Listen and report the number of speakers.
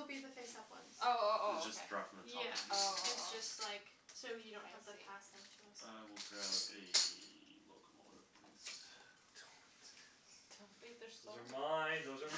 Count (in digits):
4